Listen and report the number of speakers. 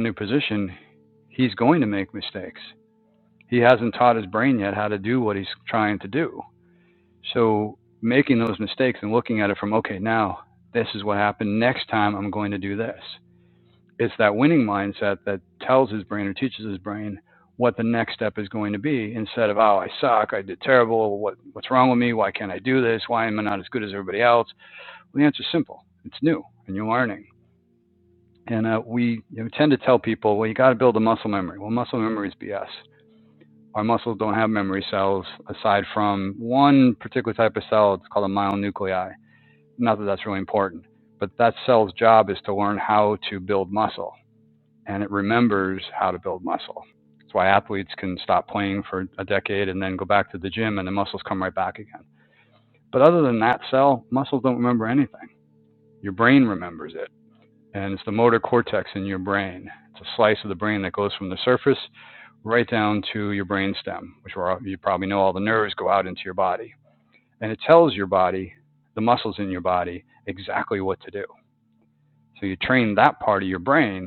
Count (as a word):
one